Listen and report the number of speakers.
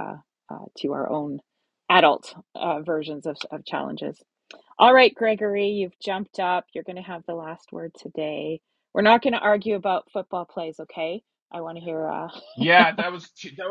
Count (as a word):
two